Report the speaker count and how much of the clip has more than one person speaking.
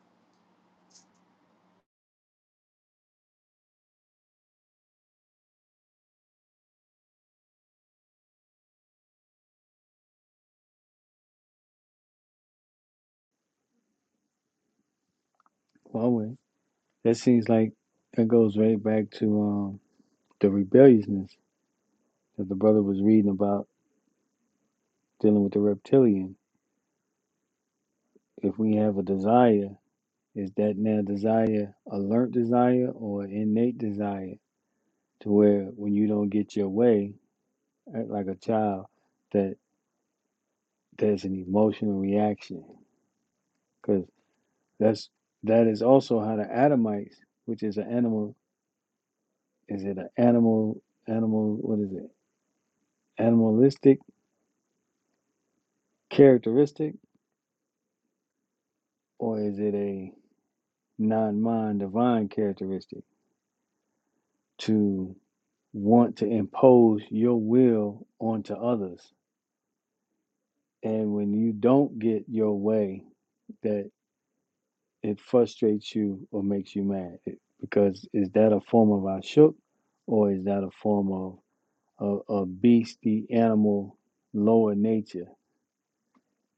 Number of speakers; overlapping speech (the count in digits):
1, no overlap